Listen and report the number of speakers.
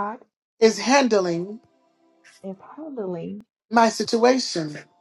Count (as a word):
two